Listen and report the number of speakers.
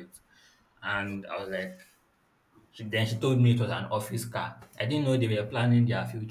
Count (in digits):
1